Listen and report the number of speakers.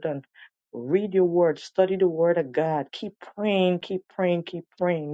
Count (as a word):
one